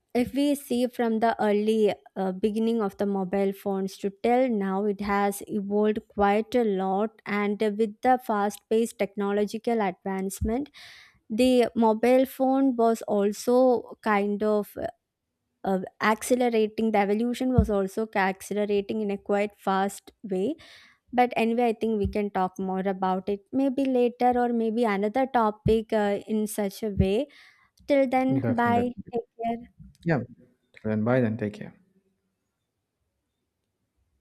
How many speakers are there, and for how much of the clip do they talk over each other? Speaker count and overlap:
2, about 2%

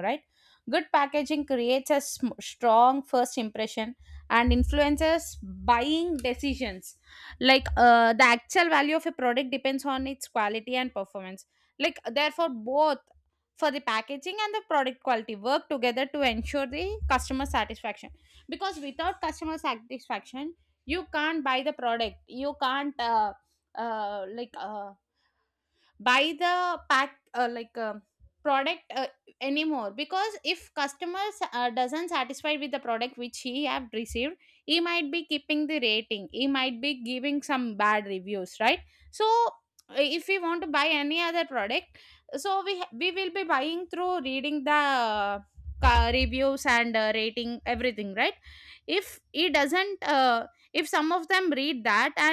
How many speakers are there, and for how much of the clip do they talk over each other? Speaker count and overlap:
1, no overlap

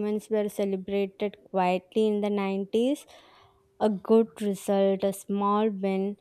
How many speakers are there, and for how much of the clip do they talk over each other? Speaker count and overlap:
1, no overlap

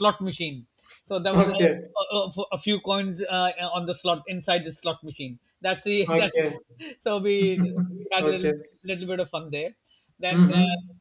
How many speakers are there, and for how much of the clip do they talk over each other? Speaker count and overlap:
2, about 12%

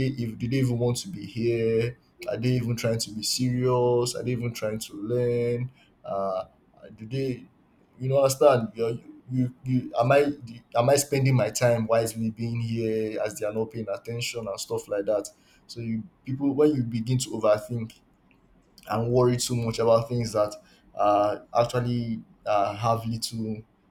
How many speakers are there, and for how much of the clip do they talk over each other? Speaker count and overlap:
1, no overlap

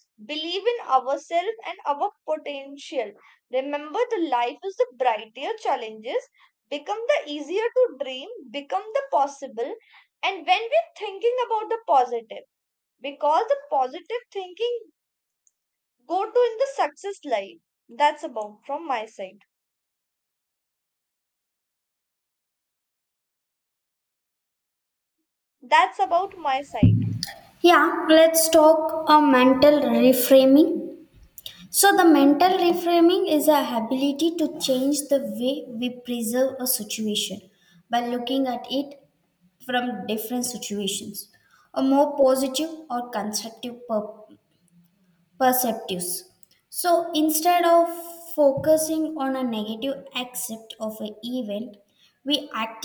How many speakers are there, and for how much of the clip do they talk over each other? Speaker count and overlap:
2, no overlap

